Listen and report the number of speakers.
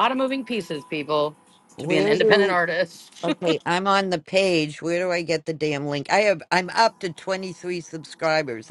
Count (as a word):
two